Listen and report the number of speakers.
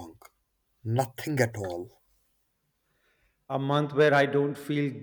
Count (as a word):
two